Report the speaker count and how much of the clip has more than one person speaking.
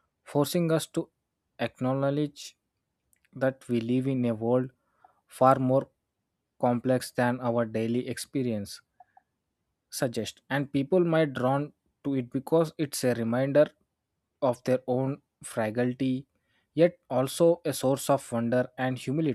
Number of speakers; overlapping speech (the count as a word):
one, no overlap